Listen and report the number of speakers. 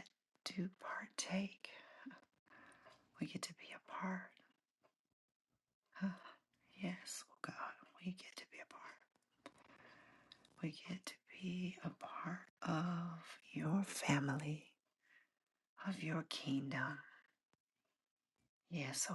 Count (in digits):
1